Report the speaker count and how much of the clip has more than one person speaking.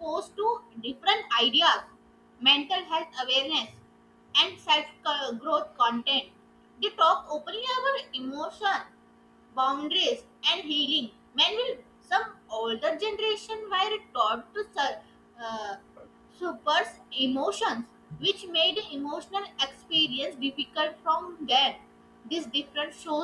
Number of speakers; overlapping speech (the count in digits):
1, no overlap